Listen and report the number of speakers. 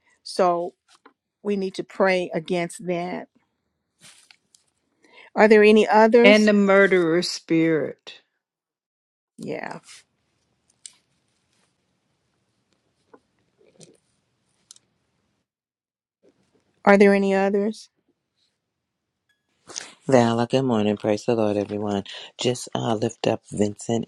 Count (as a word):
three